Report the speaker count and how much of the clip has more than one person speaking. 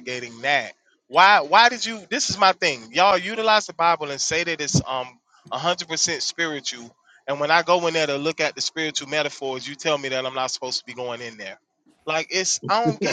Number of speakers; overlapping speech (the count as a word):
one, no overlap